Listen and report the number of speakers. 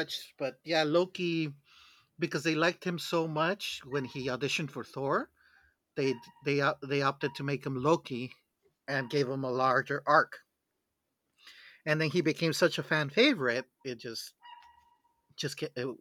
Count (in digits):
1